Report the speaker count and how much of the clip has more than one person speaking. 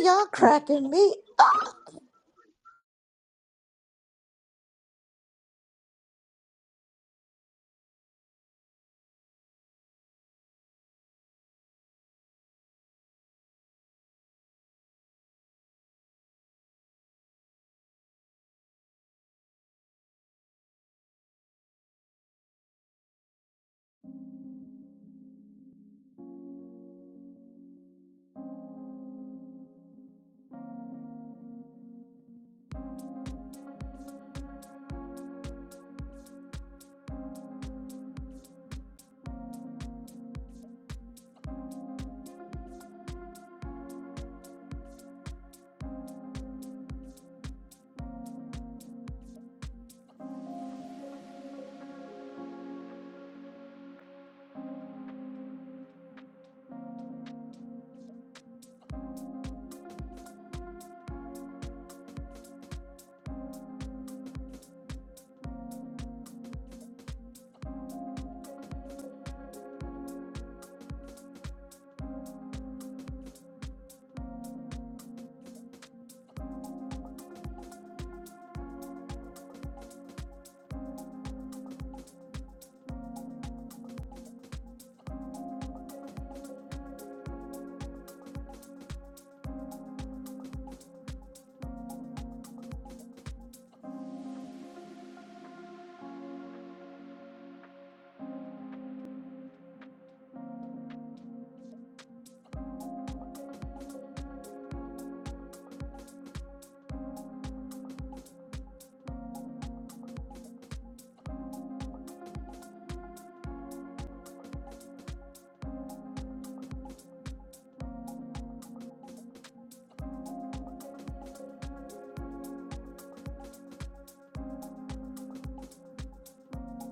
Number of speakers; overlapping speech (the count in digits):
1, no overlap